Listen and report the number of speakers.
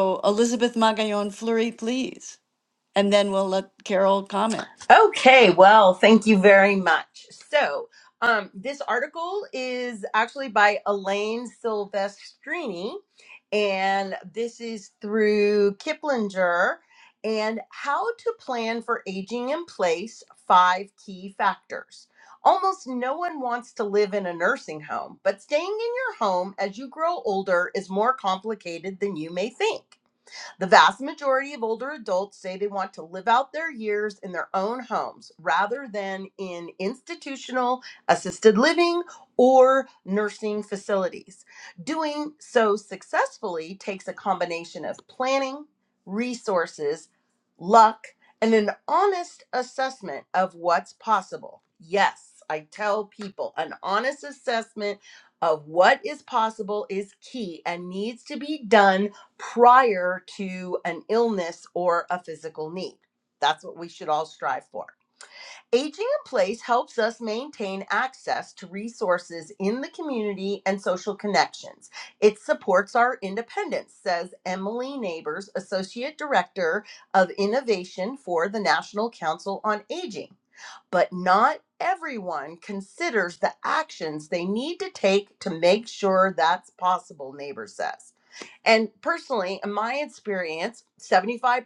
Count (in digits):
2